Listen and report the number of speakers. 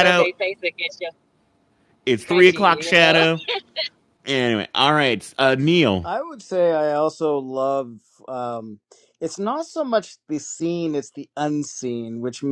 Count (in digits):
3